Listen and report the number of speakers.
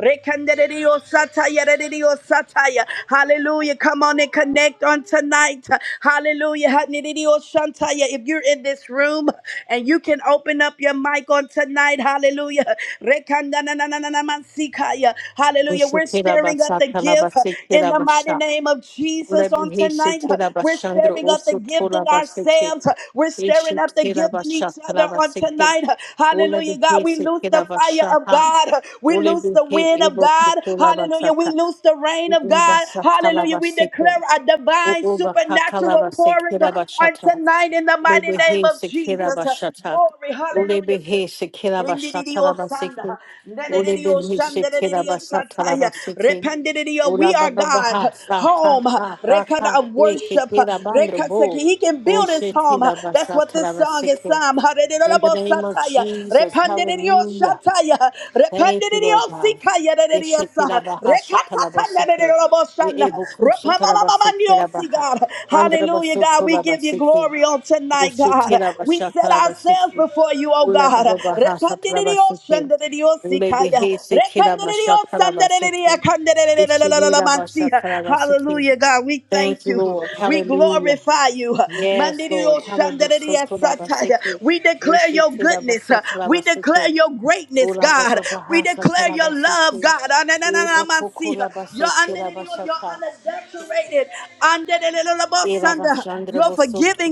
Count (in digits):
2